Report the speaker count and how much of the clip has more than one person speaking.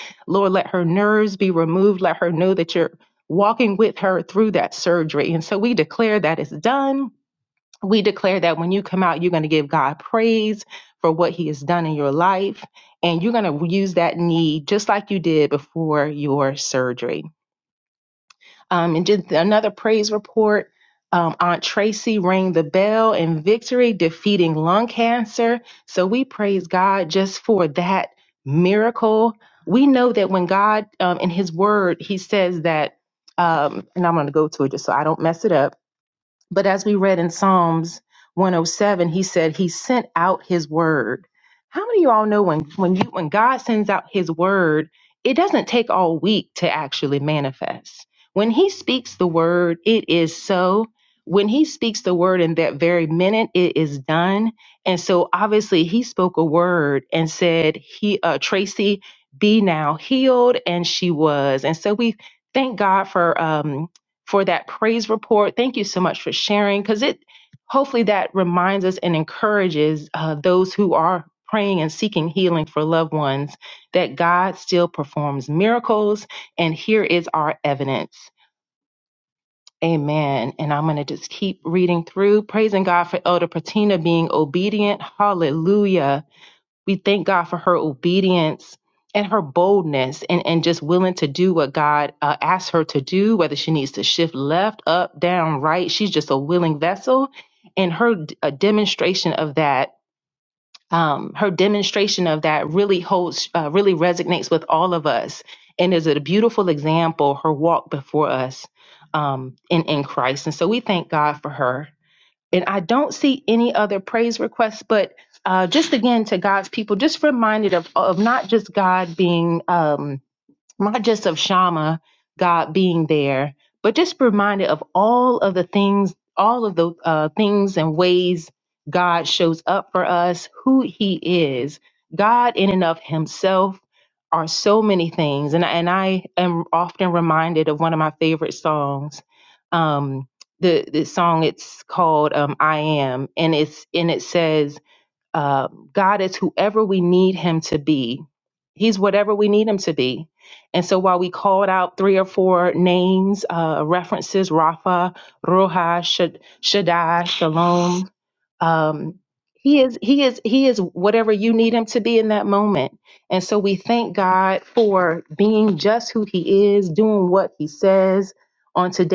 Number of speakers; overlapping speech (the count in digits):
1, no overlap